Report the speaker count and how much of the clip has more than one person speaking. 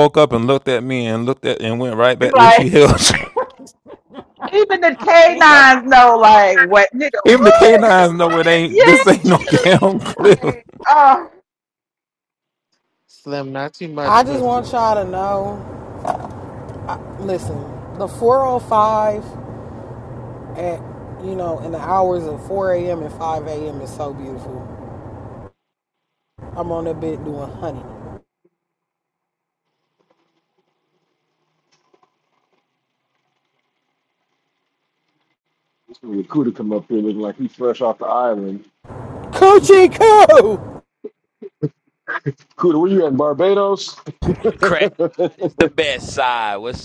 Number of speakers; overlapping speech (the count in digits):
6, about 7%